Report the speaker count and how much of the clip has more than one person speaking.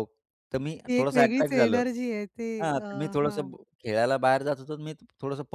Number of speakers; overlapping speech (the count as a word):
two, about 27%